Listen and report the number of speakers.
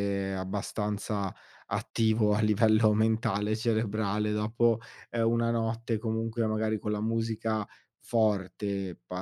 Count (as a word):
one